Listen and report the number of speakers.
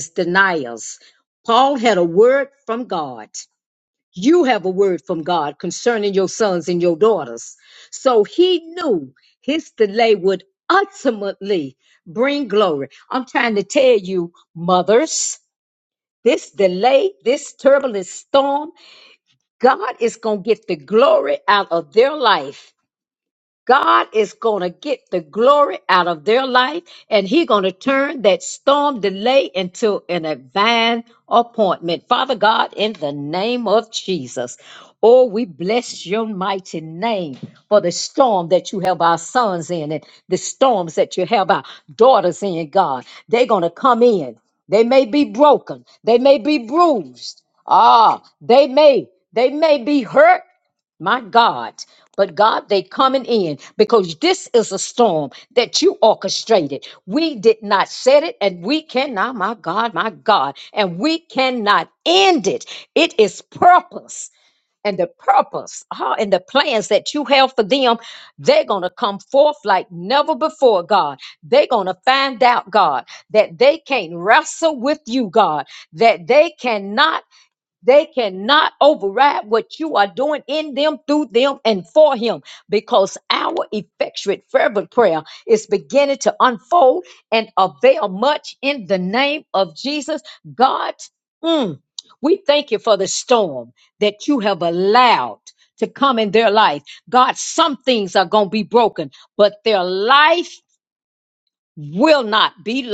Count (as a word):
one